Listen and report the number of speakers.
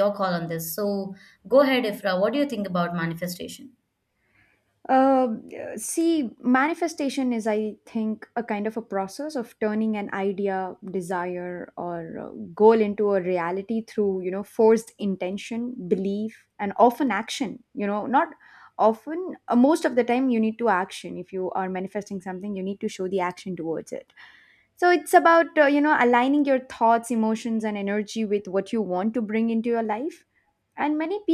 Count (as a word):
two